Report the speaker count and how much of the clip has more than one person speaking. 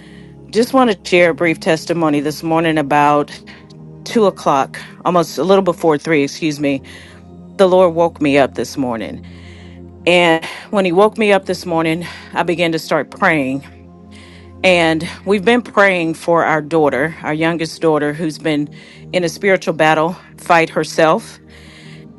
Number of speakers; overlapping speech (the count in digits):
1, no overlap